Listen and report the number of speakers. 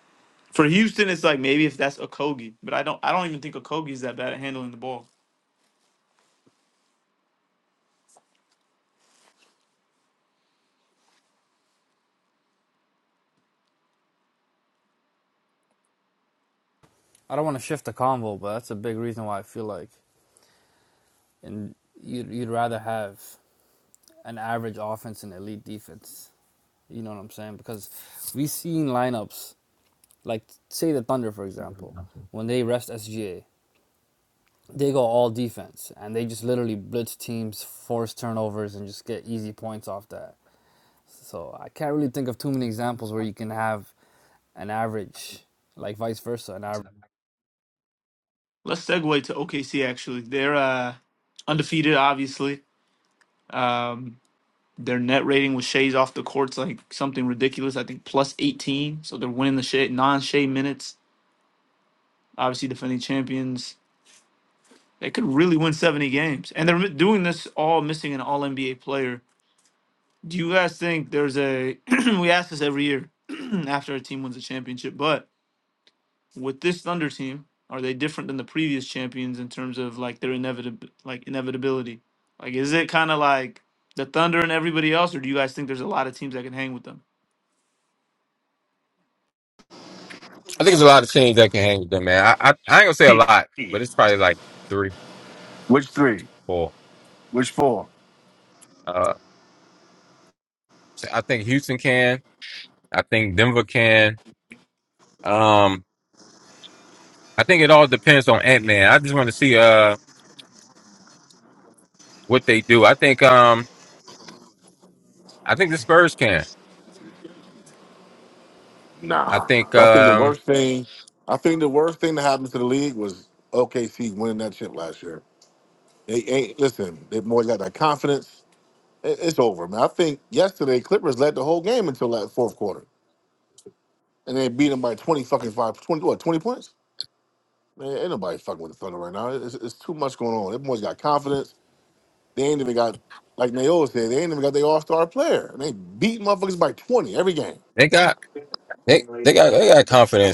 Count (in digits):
4